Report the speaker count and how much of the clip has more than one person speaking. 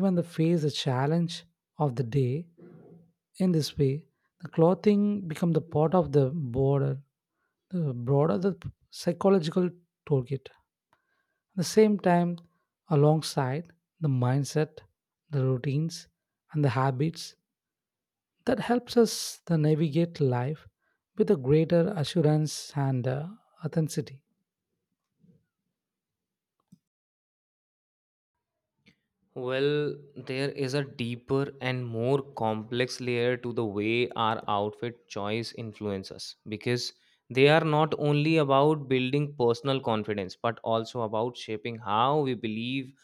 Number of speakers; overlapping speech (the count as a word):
two, no overlap